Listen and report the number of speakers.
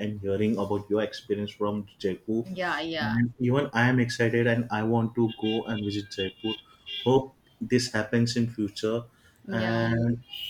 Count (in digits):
2